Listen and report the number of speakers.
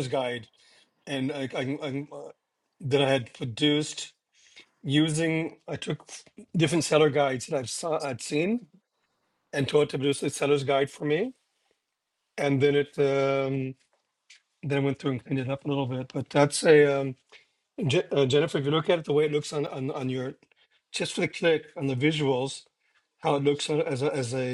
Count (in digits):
1